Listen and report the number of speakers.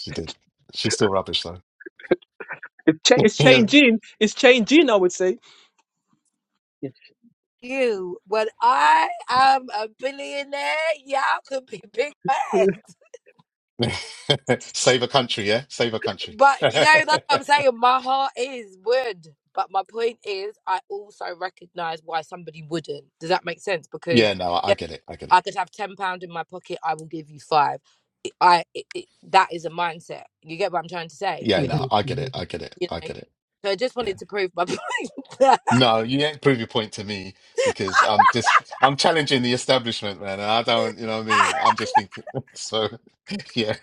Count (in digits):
3